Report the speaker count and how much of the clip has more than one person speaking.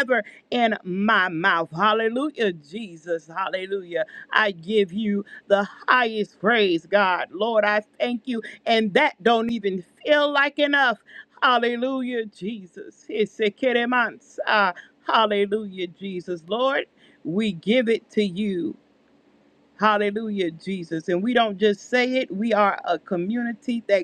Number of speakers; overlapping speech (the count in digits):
1, no overlap